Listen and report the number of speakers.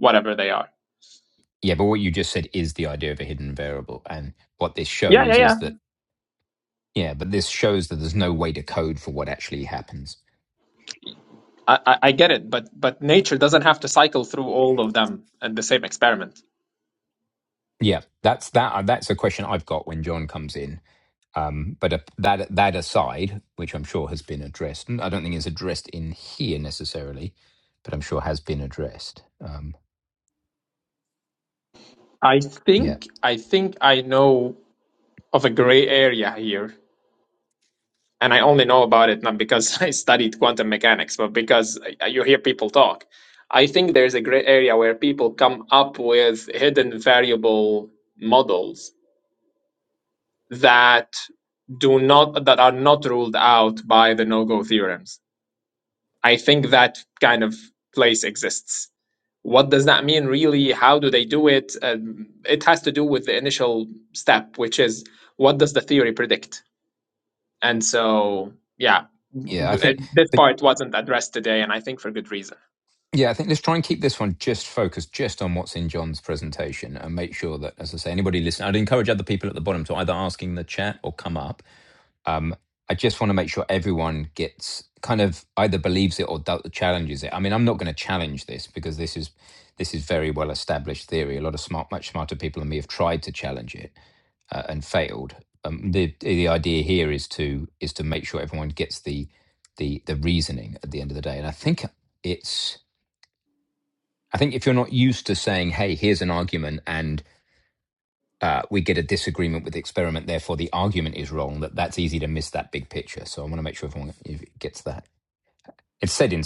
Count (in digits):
2